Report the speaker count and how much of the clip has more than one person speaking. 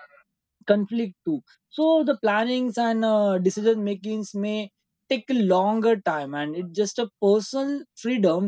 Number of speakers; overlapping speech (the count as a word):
one, no overlap